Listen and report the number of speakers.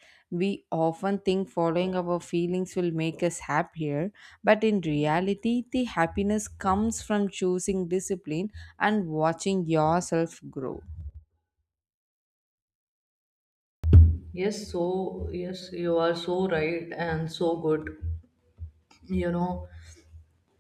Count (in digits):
2